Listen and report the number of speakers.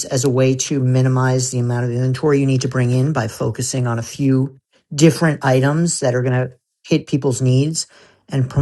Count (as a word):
one